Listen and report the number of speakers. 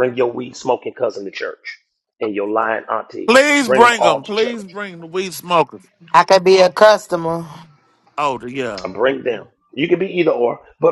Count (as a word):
three